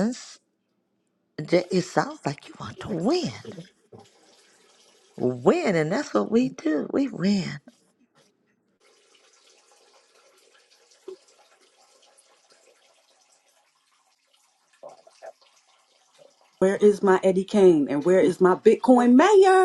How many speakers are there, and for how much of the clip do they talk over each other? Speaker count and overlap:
2, no overlap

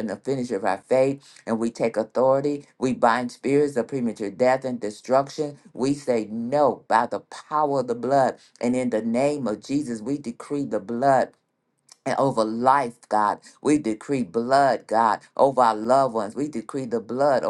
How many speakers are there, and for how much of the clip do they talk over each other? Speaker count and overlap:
1, no overlap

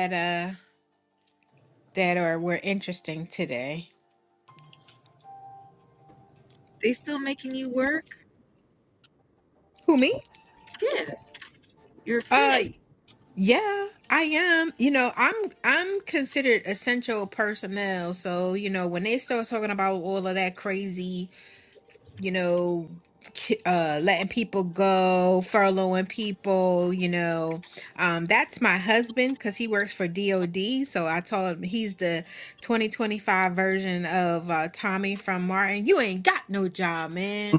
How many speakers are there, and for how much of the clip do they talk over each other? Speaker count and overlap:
2, about 1%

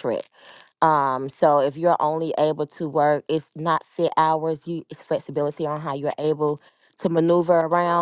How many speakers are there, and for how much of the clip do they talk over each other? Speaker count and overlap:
1, no overlap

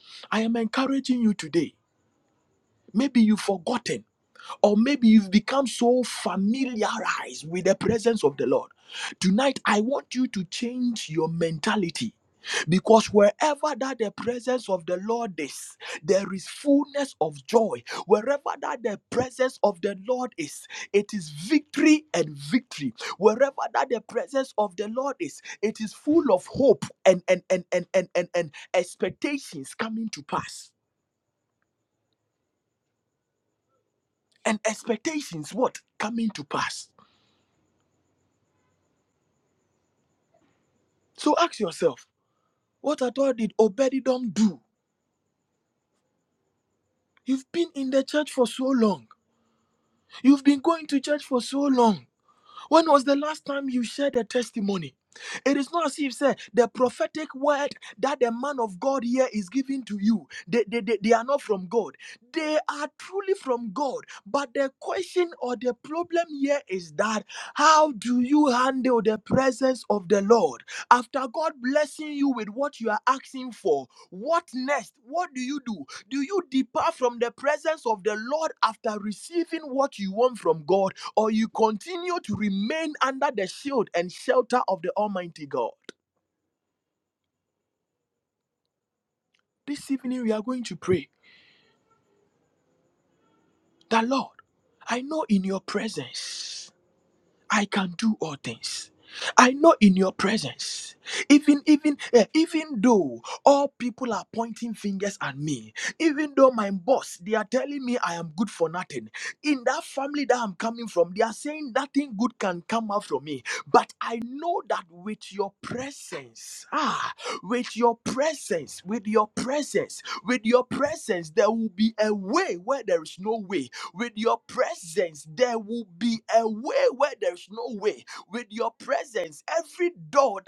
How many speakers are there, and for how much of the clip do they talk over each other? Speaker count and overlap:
1, no overlap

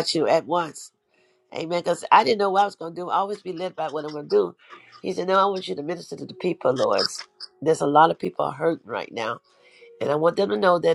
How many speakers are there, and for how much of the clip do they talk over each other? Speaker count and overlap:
1, no overlap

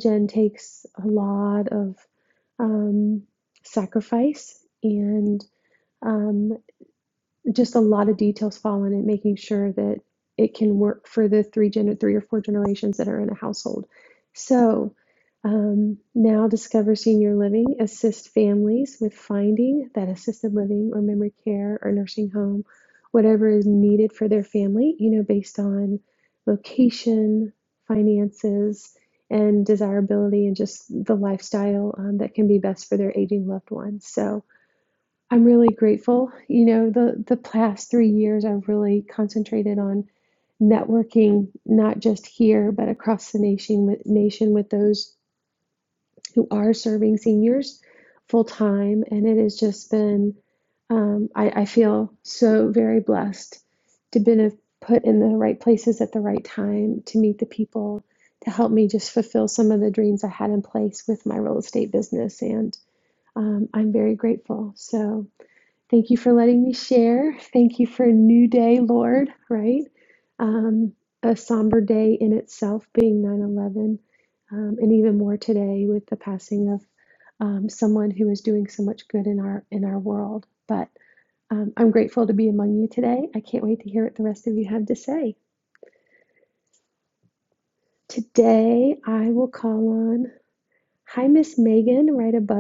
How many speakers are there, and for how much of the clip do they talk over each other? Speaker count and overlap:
1, no overlap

